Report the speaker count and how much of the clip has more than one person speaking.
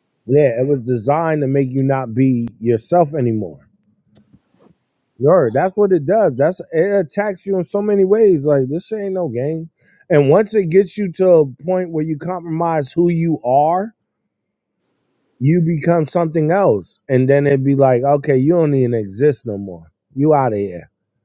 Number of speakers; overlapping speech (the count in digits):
1, no overlap